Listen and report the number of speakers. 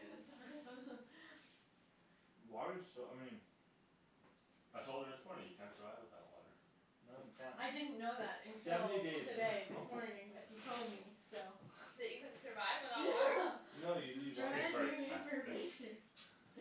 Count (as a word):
four